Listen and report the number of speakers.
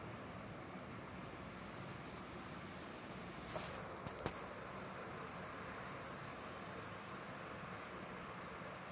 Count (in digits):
0